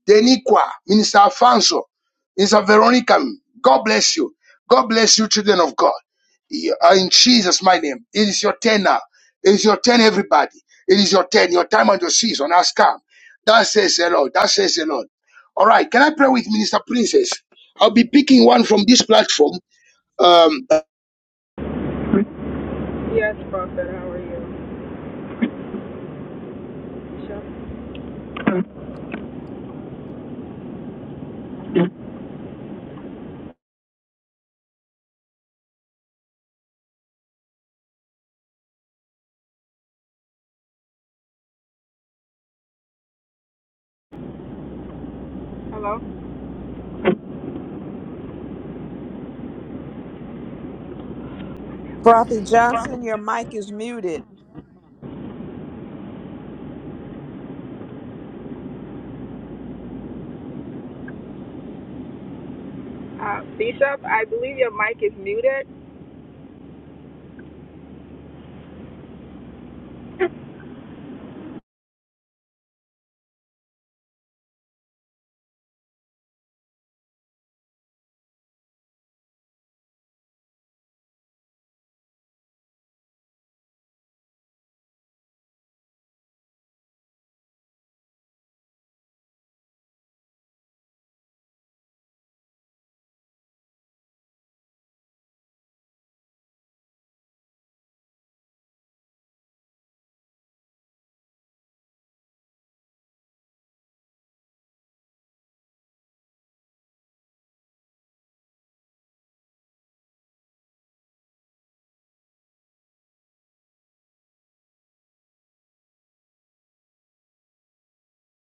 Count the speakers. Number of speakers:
three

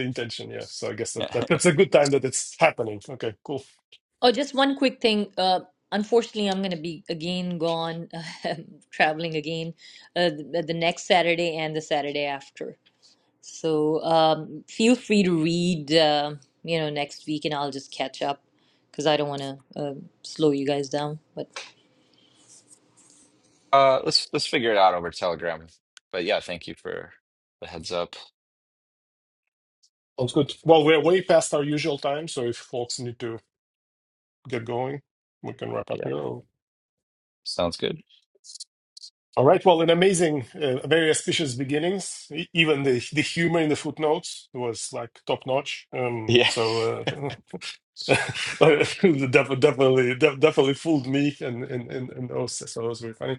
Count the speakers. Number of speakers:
three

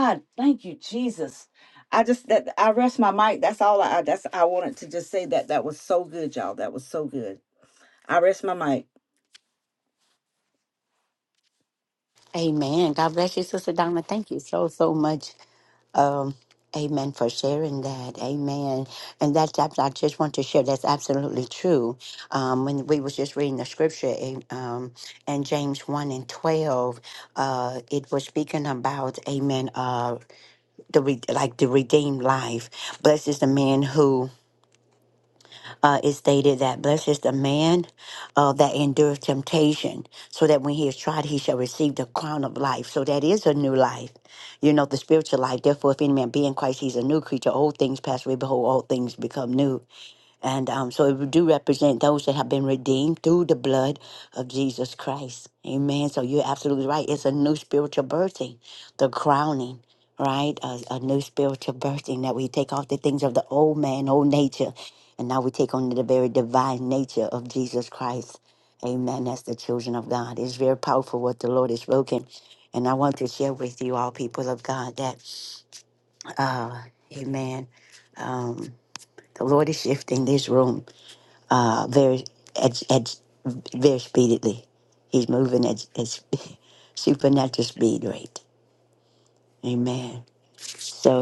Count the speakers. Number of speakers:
two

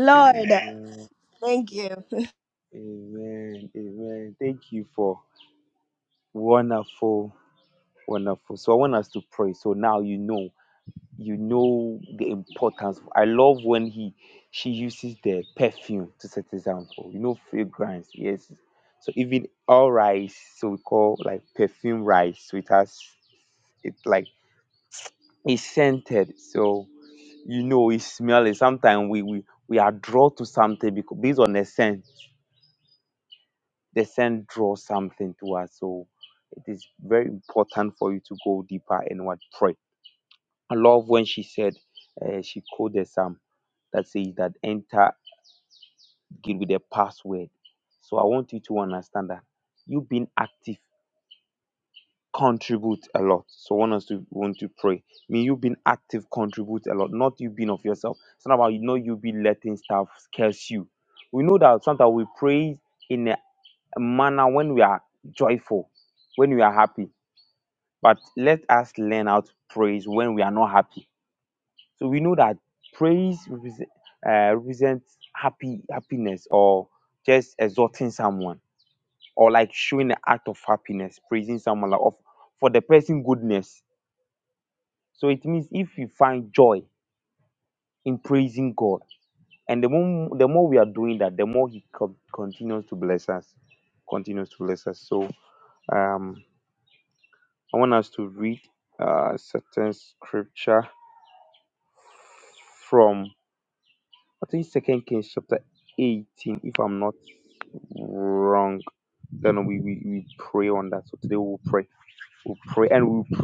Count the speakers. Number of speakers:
two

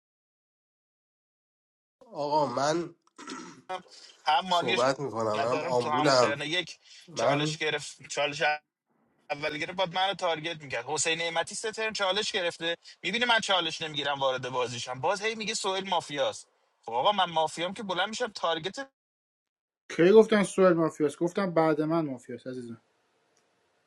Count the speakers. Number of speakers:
three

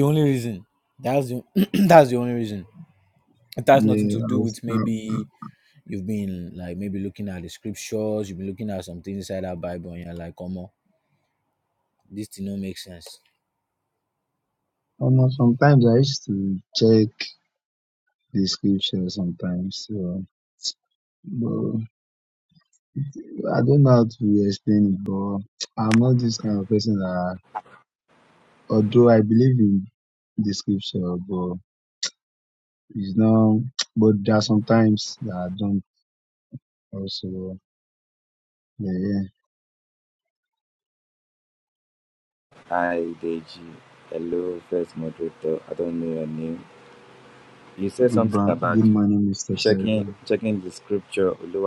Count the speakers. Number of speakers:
three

